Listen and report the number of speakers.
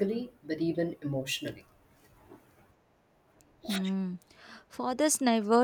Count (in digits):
2